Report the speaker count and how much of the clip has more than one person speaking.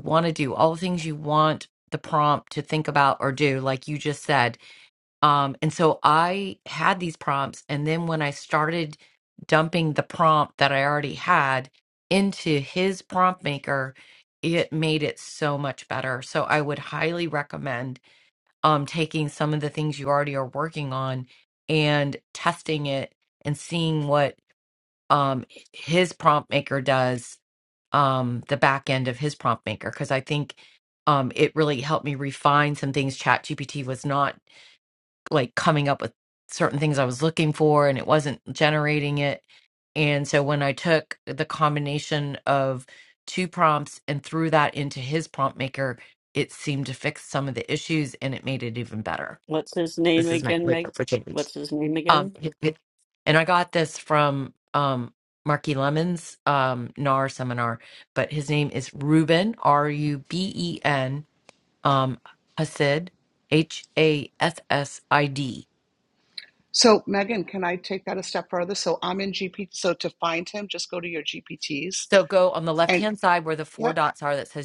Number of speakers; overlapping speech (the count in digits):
3, about 2%